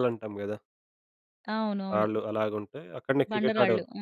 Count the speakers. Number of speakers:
2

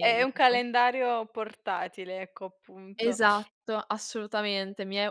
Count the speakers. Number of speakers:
2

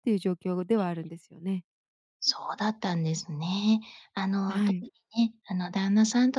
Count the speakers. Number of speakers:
2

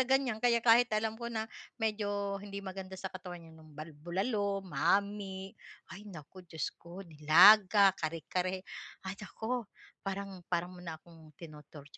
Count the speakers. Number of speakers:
1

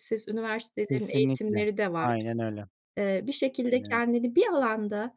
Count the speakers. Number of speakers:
2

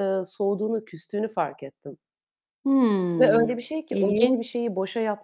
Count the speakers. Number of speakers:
2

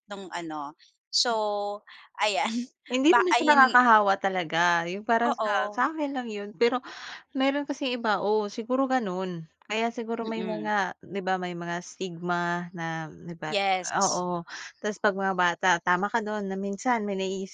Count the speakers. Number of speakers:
2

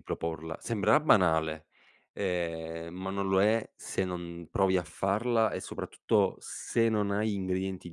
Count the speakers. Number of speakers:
1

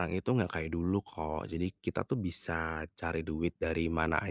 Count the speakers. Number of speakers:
1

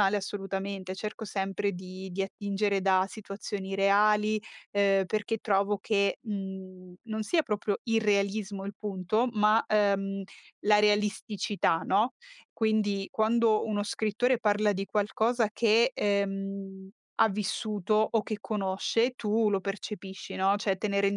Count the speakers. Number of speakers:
1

